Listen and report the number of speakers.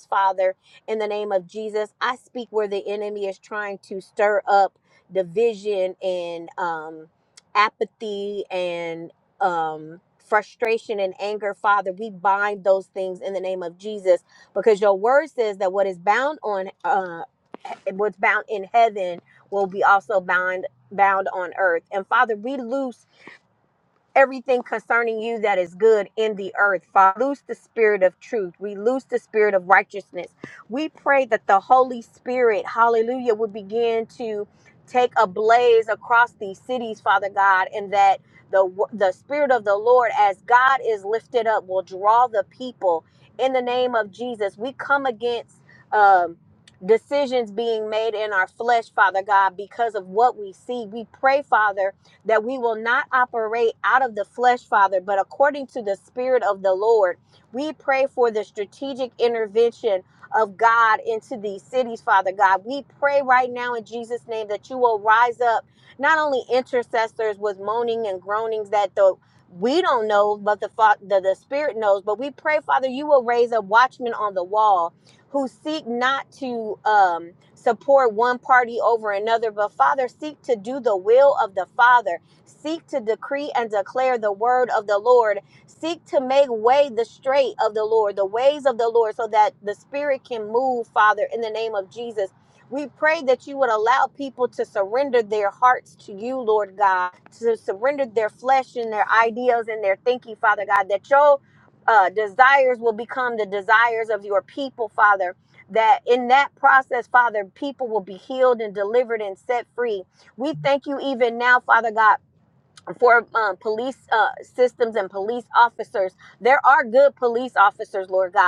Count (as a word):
one